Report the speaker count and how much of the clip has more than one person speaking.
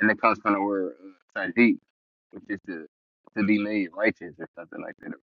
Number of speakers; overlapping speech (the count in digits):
1, no overlap